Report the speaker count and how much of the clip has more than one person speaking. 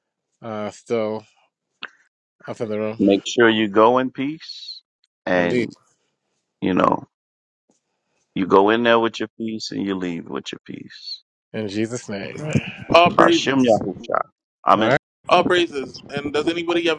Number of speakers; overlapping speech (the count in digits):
3, about 7%